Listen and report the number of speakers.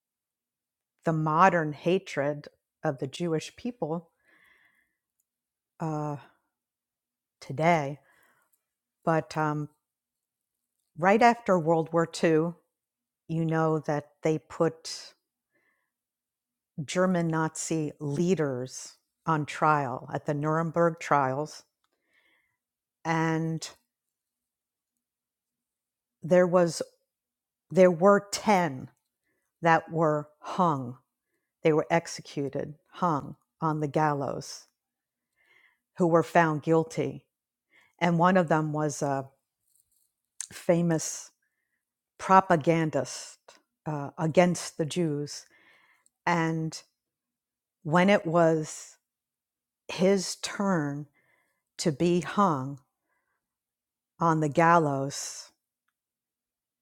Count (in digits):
1